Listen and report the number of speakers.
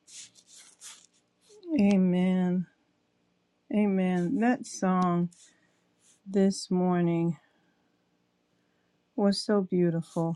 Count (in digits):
1